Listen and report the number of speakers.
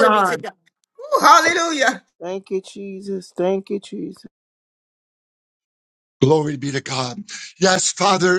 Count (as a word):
three